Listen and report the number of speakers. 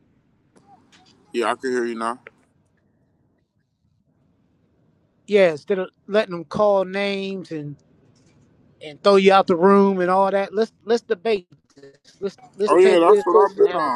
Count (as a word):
two